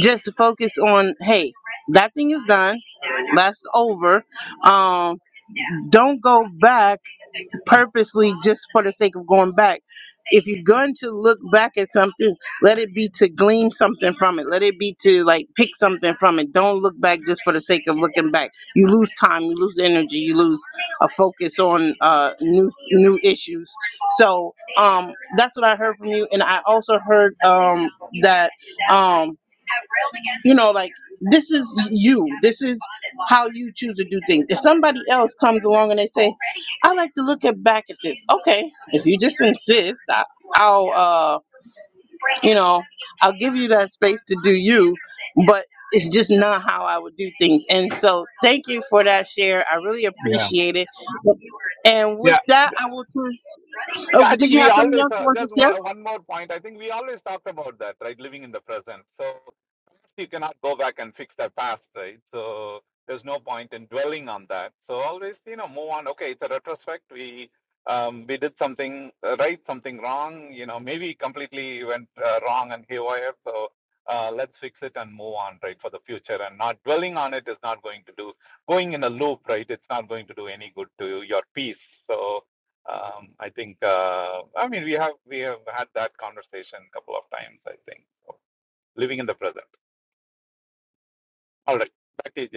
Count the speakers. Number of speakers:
two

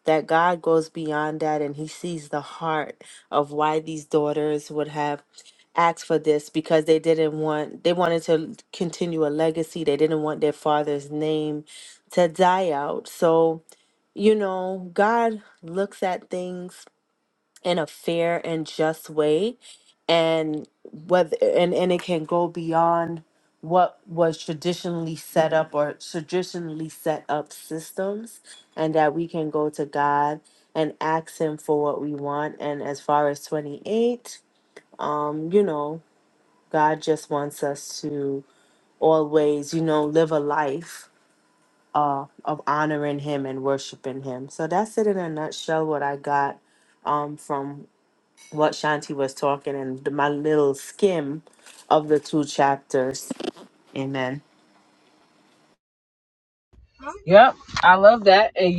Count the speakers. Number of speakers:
two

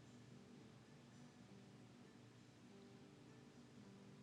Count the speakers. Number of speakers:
zero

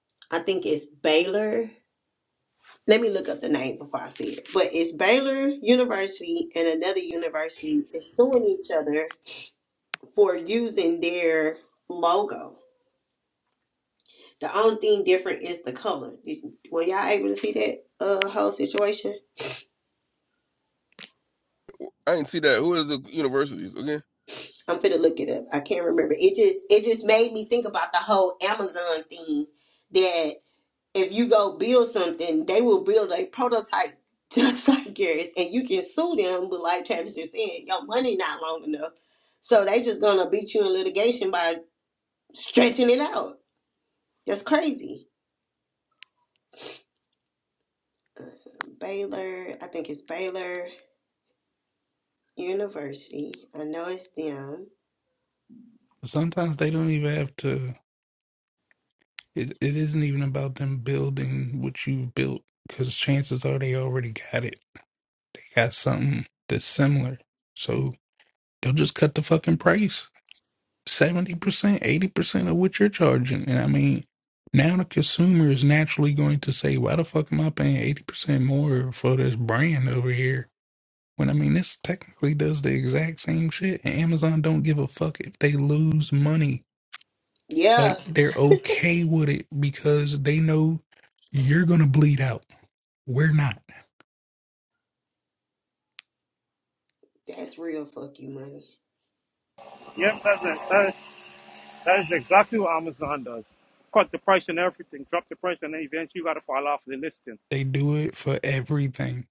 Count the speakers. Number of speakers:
four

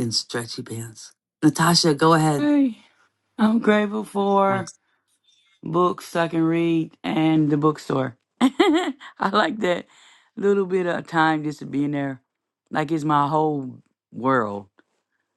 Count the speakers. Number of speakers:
two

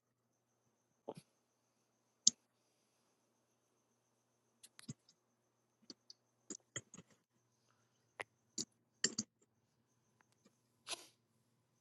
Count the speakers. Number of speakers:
zero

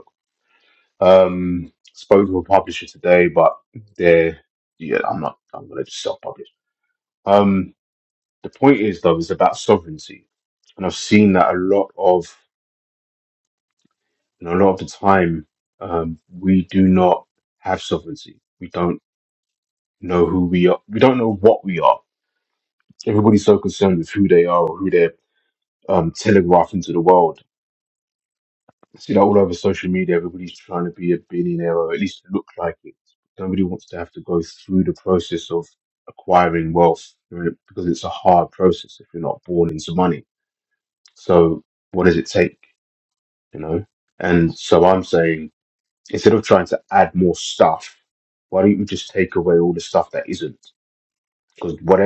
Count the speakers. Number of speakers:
one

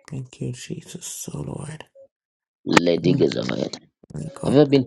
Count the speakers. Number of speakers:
two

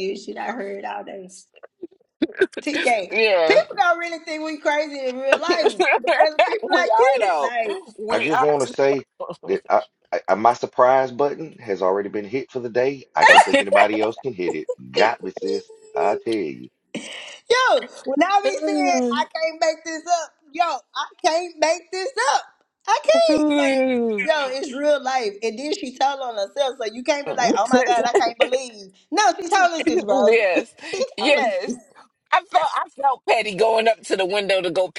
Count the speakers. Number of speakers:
three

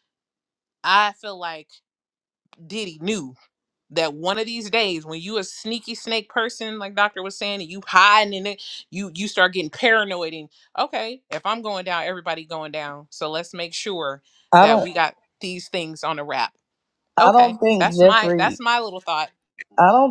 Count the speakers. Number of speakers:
two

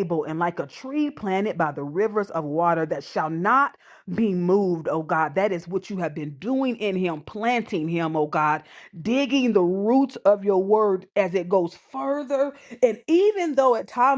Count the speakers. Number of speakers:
one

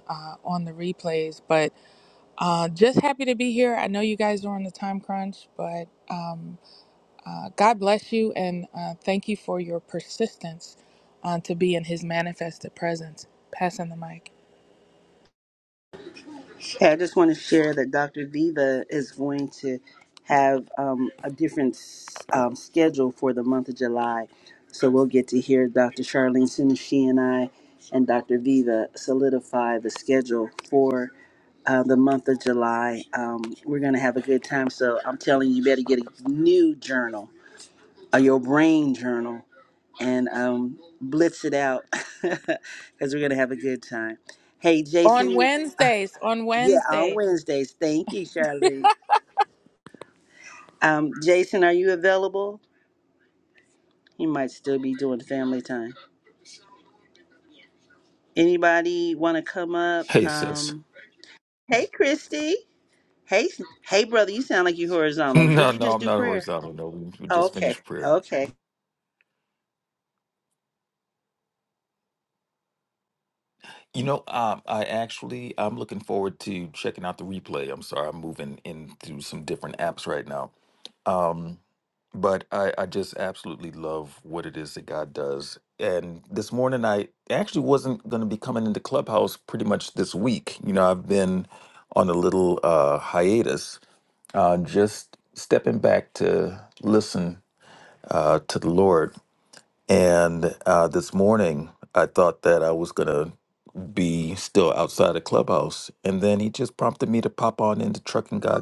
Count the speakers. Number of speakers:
three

